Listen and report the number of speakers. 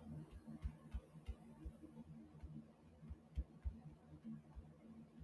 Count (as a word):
zero